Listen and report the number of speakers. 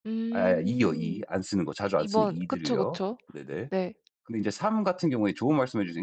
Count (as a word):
two